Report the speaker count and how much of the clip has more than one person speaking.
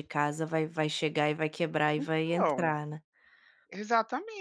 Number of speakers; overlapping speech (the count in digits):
2, about 17%